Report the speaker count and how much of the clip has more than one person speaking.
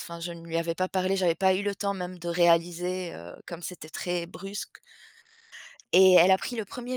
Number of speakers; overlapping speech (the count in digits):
1, no overlap